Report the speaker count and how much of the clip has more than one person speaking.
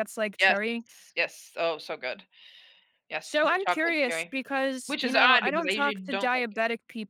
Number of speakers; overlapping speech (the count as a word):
two, about 38%